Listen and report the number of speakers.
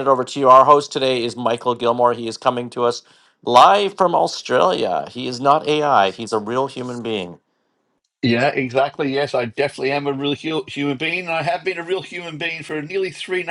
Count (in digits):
2